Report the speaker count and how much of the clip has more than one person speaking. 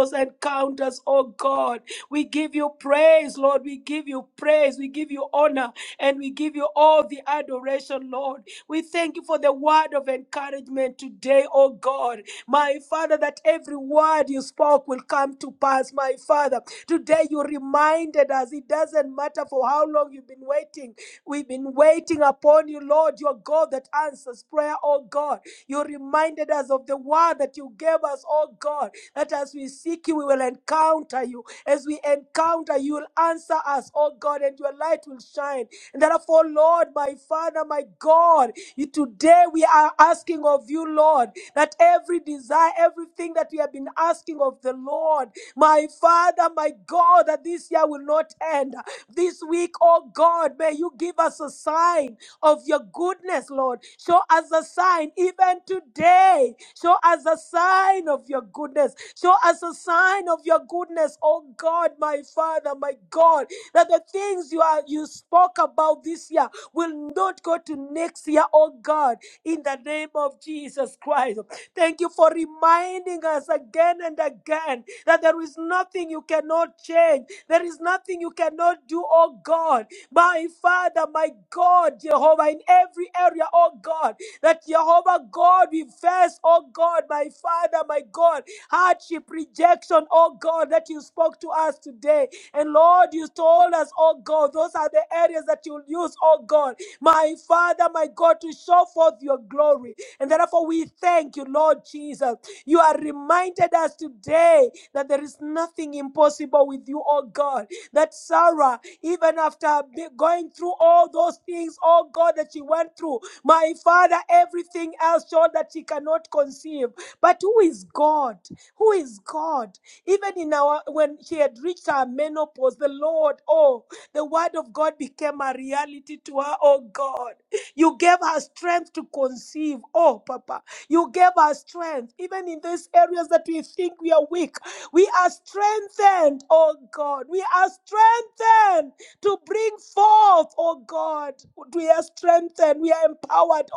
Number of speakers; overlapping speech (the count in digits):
1, no overlap